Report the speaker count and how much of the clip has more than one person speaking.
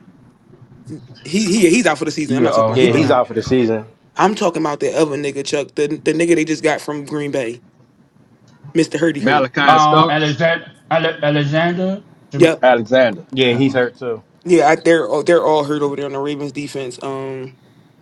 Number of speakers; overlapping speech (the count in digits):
4, about 11%